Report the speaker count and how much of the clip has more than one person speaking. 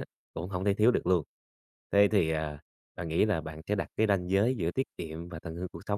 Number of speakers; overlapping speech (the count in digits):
1, no overlap